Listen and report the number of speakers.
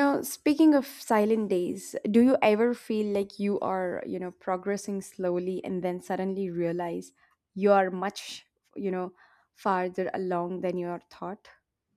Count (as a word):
one